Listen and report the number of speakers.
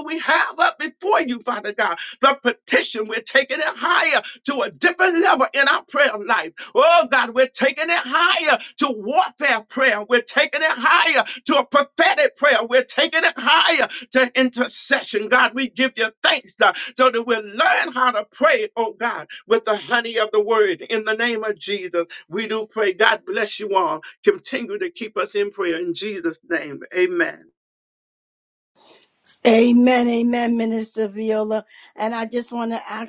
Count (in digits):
2